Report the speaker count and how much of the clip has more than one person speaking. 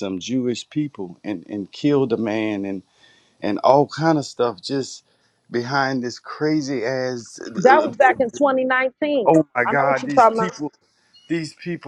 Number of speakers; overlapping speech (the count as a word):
two, about 11%